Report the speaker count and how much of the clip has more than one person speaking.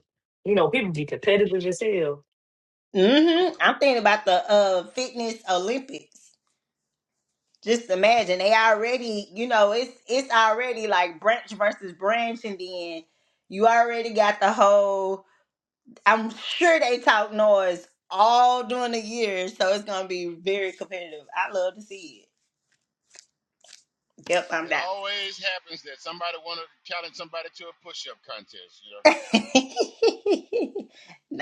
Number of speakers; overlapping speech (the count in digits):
3, about 1%